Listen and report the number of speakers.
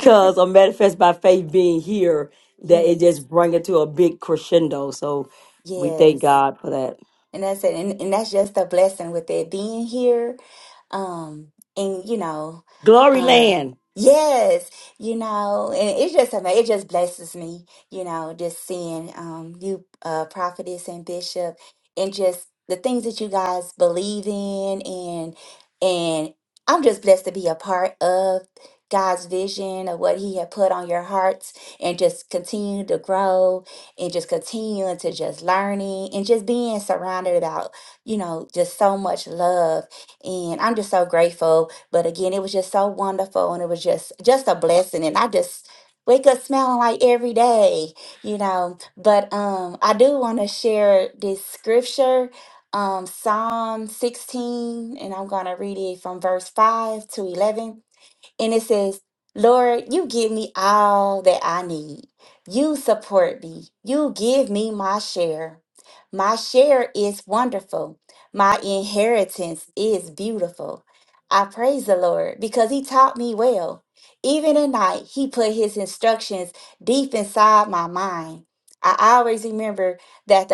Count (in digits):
2